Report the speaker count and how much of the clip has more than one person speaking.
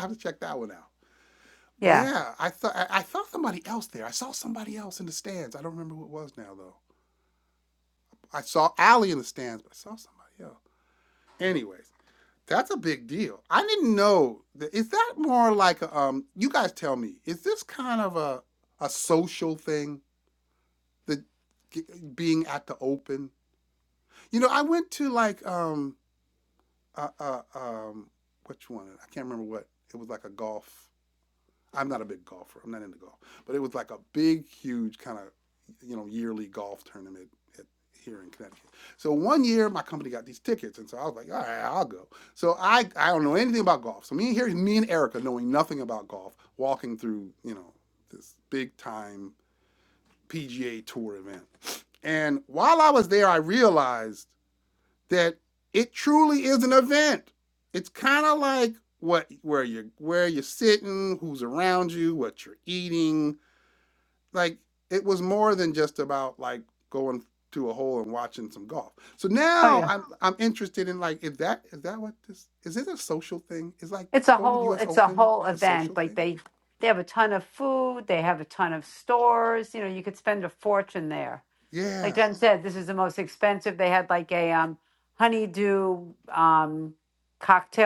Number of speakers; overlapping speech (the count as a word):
two, about 3%